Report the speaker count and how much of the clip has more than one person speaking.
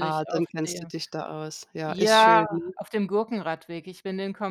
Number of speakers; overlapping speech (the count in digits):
2, about 39%